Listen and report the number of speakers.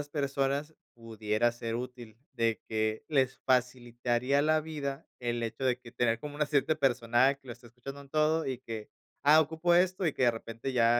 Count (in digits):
1